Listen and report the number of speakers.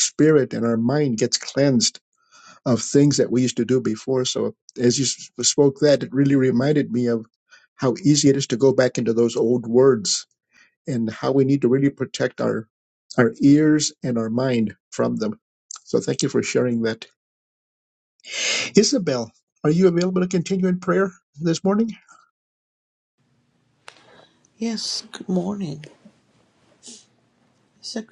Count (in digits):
2